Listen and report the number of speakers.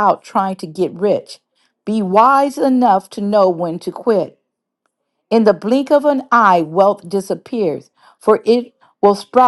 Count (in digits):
1